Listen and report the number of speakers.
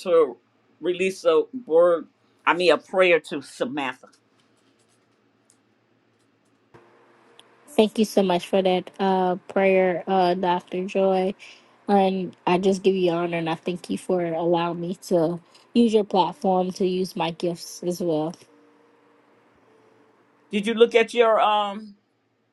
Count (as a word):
two